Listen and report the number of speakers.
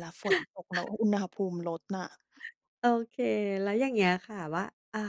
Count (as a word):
two